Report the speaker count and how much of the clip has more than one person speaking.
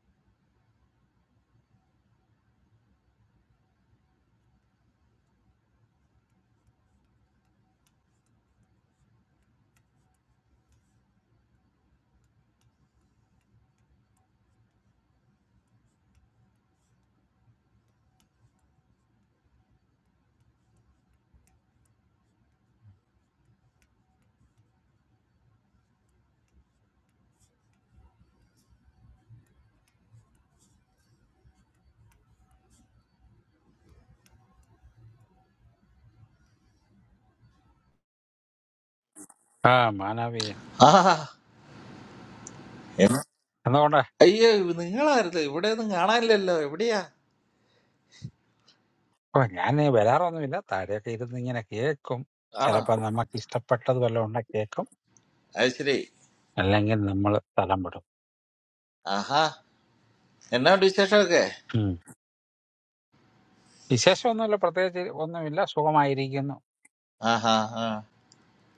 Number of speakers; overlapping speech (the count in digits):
2, under 1%